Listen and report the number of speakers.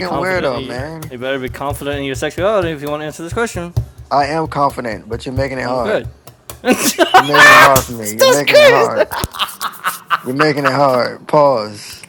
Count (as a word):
two